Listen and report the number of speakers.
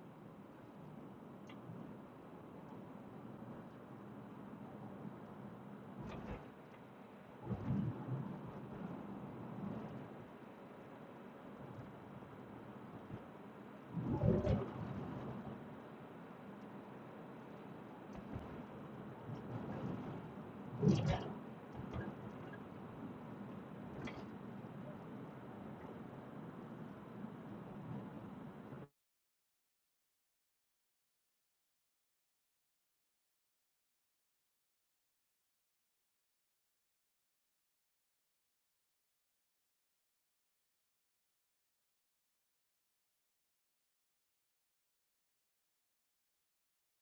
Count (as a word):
zero